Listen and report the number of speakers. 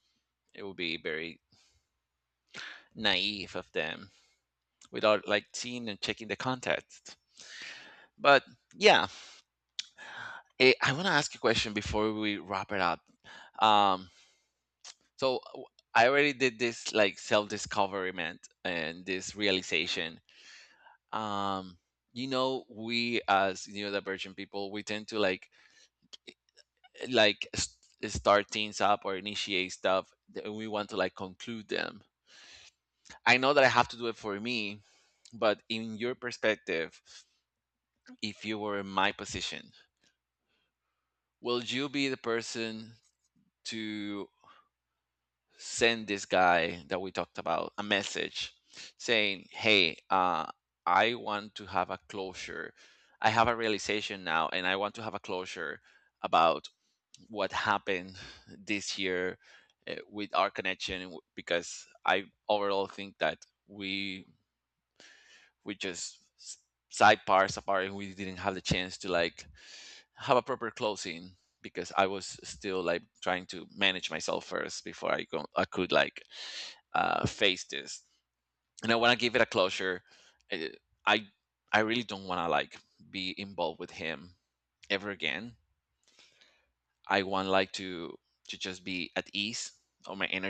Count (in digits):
1